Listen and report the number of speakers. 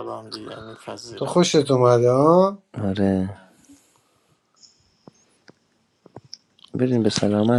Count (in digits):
3